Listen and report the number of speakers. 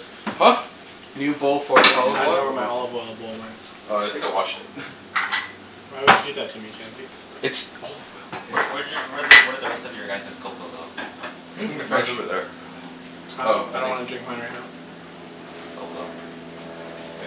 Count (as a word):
four